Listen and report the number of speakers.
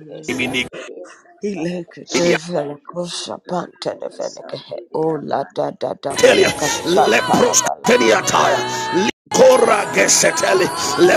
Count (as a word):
three